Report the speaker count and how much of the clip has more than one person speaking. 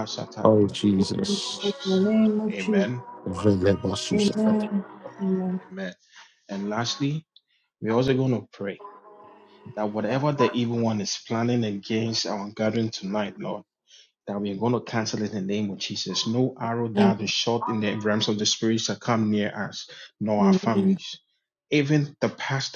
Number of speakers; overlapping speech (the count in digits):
3, about 10%